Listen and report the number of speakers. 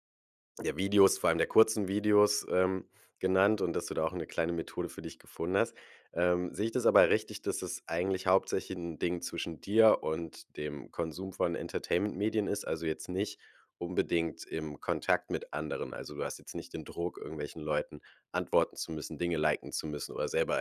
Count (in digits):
1